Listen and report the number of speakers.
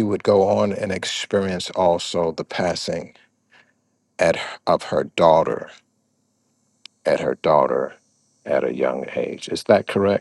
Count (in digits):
1